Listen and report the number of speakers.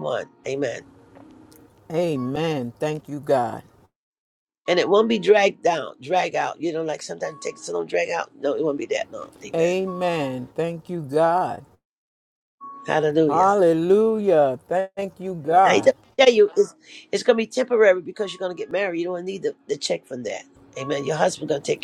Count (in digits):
2